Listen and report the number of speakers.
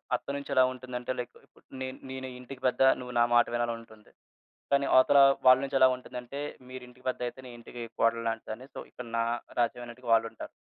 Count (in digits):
1